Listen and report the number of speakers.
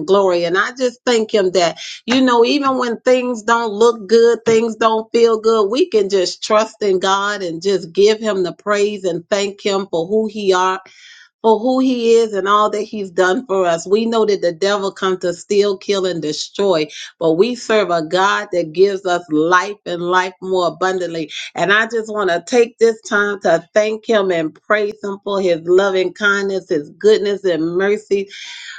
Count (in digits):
1